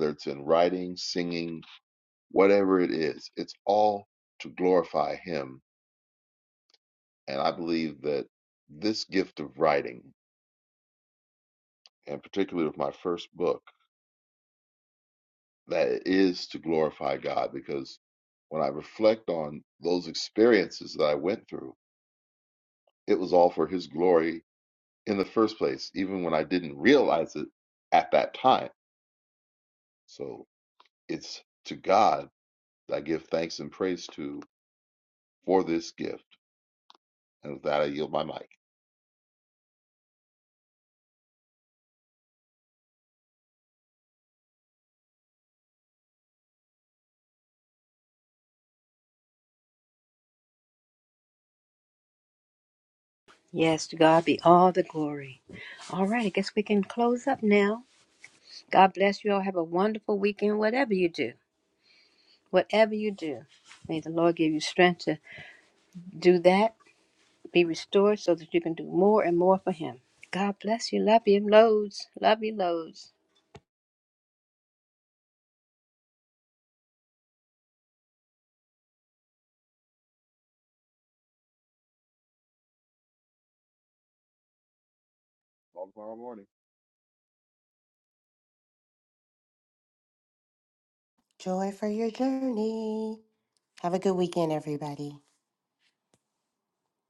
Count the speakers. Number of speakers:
three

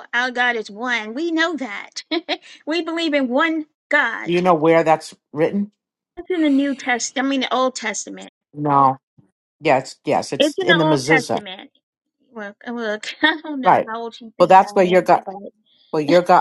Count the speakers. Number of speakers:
two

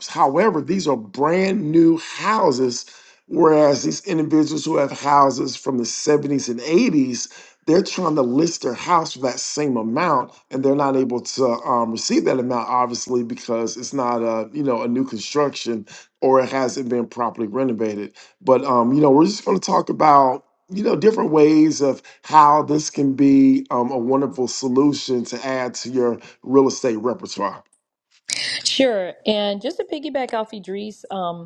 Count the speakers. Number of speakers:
two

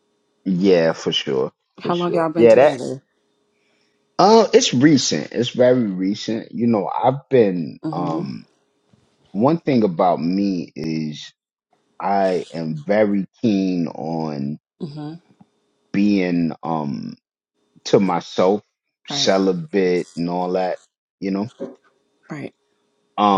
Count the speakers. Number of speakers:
two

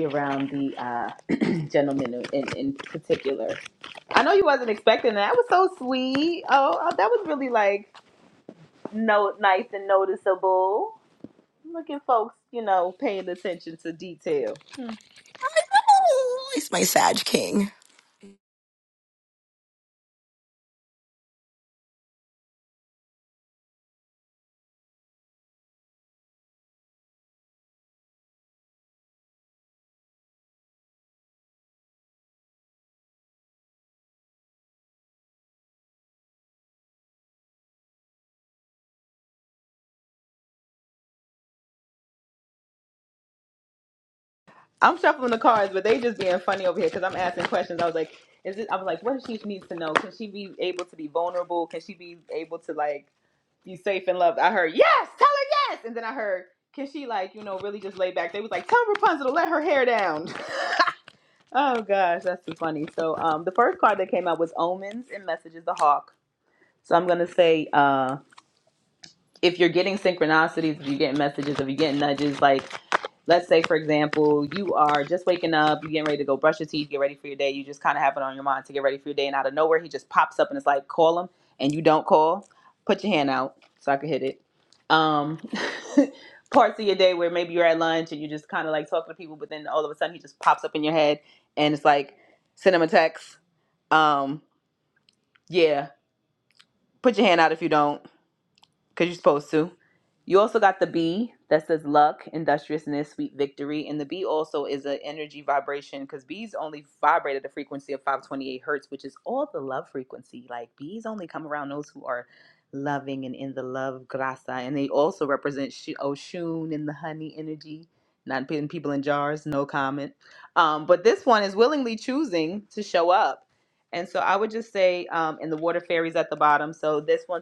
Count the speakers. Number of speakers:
two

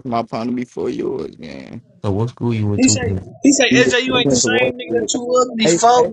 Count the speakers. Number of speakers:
three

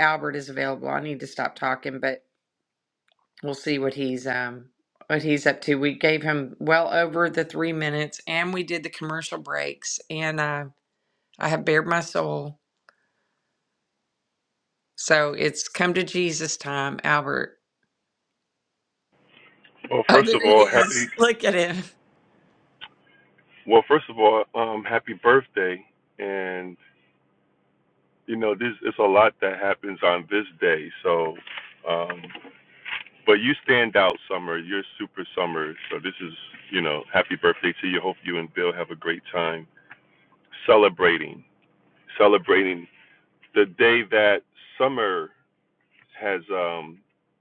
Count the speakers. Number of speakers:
two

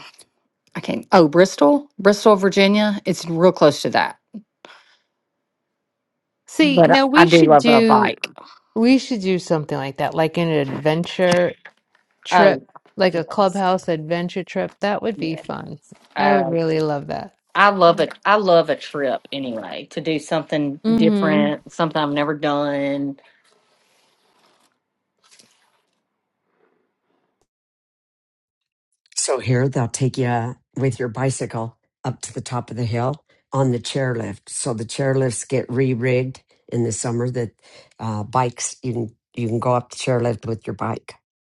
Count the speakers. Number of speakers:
three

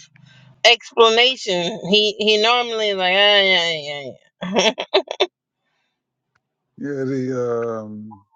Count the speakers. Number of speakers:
two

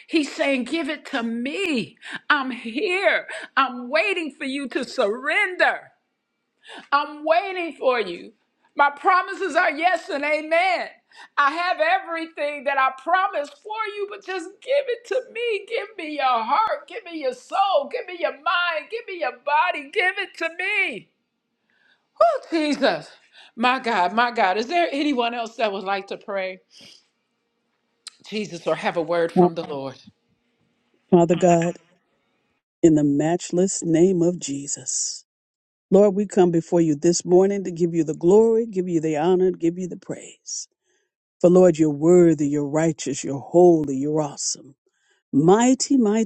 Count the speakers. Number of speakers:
two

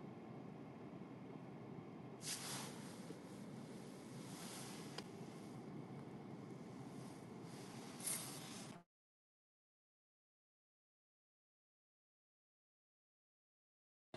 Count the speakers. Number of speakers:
zero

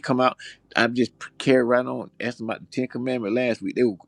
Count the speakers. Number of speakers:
one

